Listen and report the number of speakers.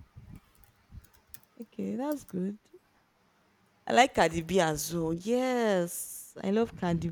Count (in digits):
1